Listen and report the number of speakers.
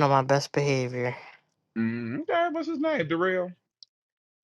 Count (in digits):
2